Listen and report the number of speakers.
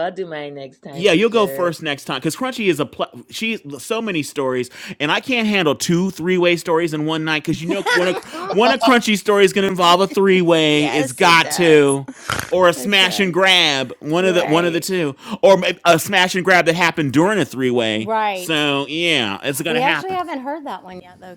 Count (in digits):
3